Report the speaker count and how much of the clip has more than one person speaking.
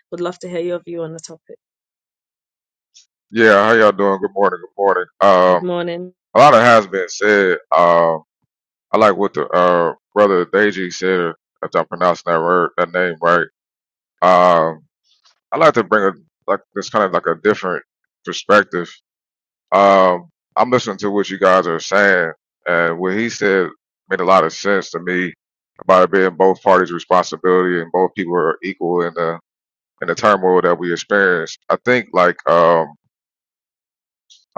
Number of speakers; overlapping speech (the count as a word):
two, under 1%